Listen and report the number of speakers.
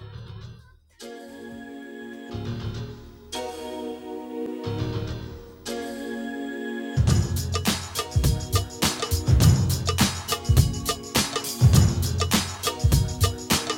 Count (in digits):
0